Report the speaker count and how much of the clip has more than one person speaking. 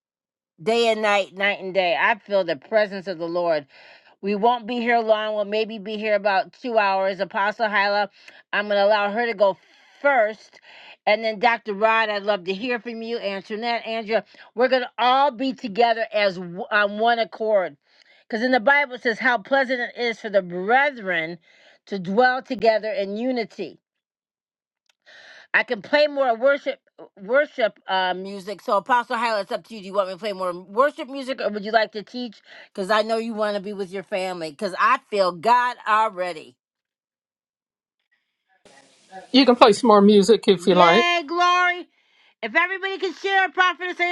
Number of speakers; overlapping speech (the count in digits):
2, under 1%